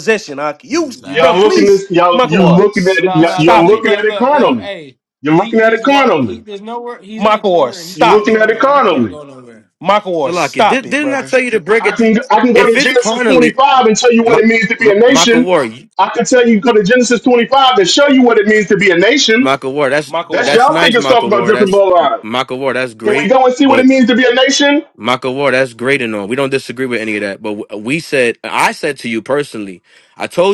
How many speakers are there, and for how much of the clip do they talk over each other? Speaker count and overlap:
four, about 36%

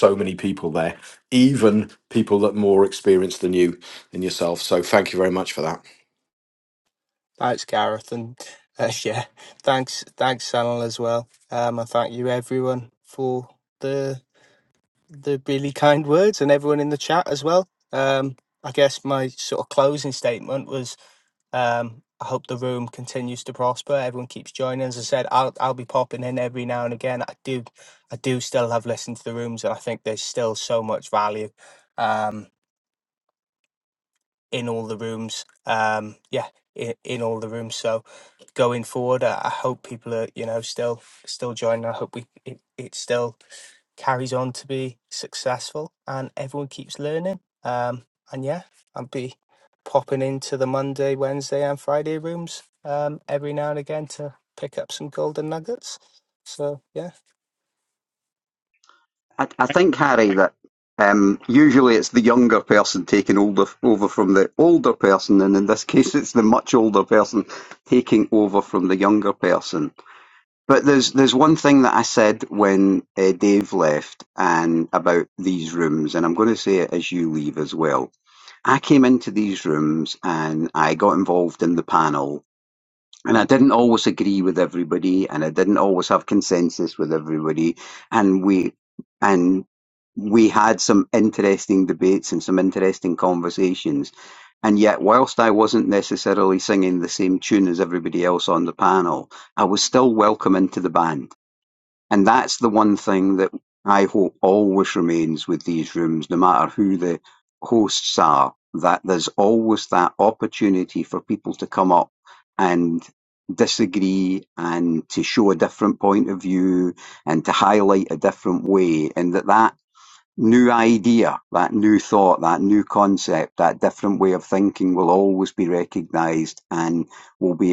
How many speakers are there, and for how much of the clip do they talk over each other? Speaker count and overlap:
three, no overlap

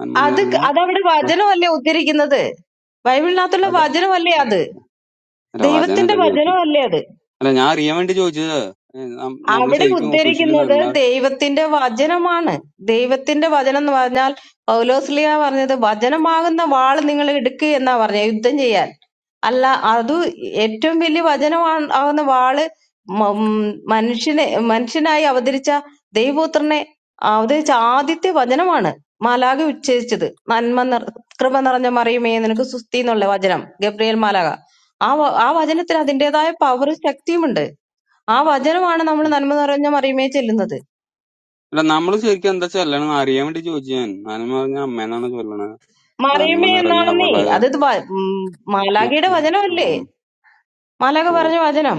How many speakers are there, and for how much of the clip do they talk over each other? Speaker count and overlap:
two, about 9%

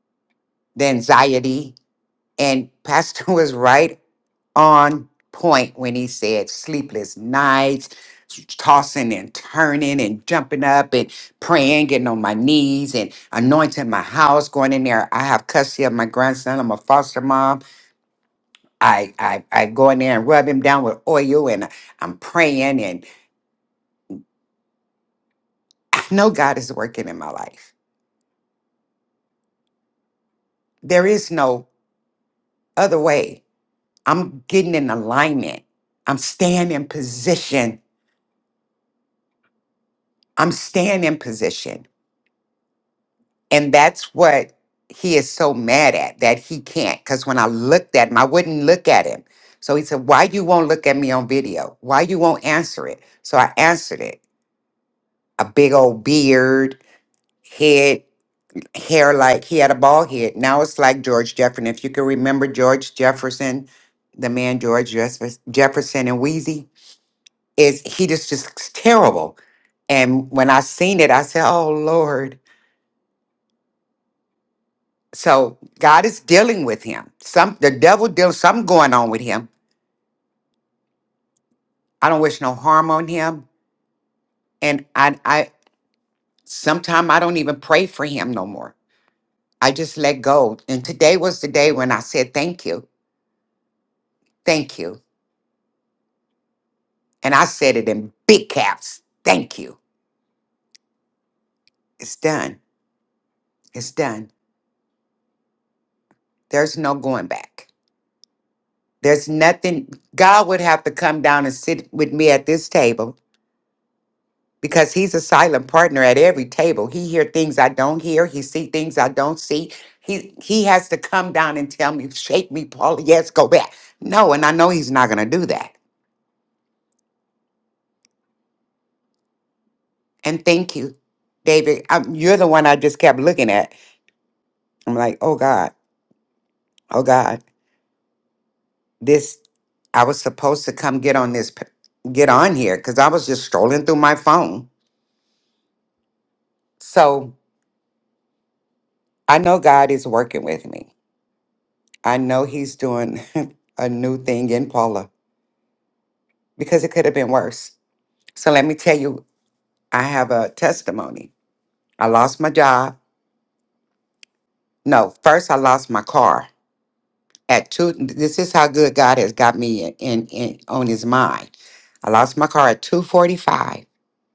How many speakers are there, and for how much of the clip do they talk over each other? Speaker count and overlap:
one, no overlap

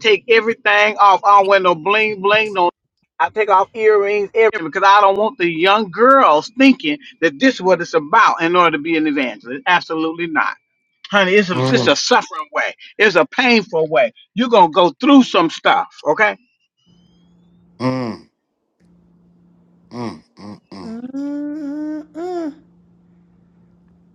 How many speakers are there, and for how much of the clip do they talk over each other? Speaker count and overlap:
three, about 2%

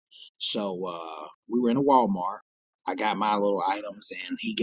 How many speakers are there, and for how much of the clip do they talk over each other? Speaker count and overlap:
one, no overlap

